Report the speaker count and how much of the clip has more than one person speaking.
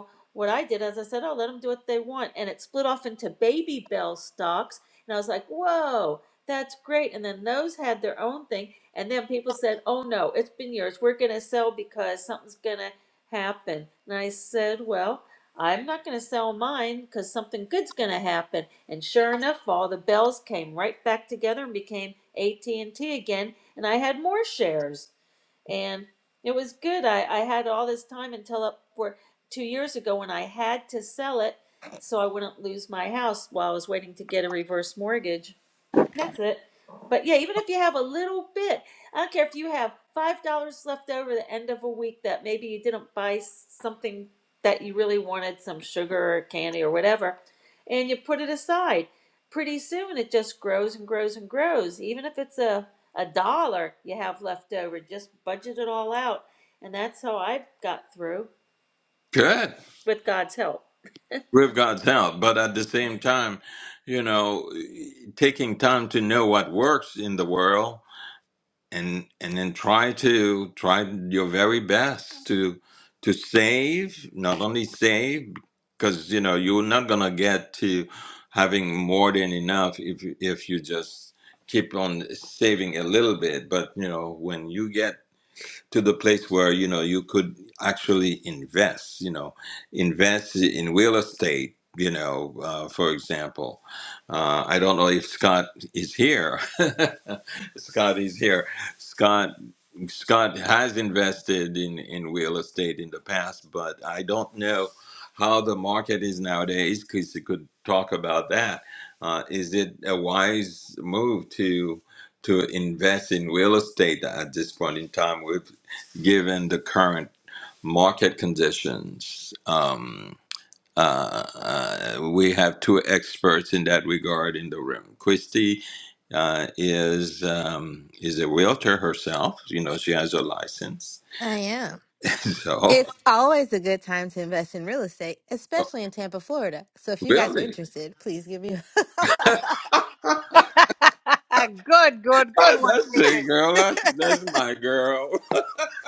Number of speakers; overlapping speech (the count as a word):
four, about 1%